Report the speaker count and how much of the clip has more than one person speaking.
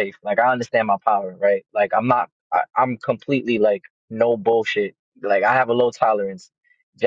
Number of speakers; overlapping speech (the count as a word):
one, no overlap